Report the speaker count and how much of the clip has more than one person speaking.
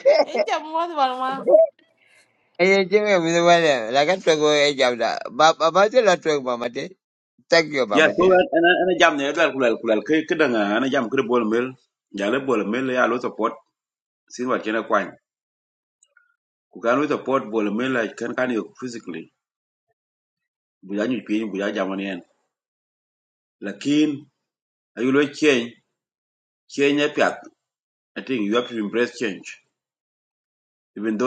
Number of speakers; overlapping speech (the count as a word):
three, about 1%